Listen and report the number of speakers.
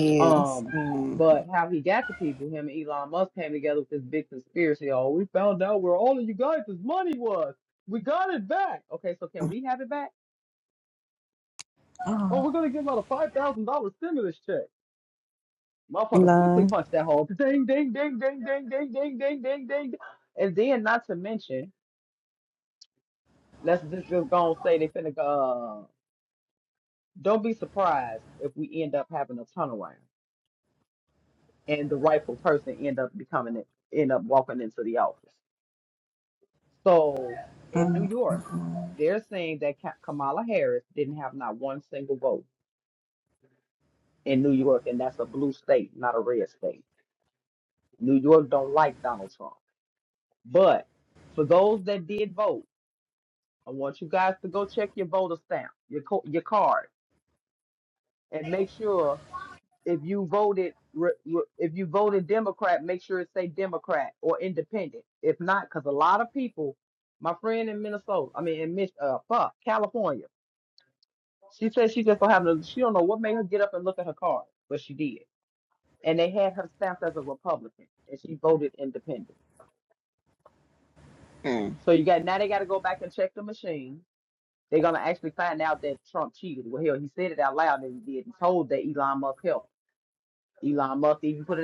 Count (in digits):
2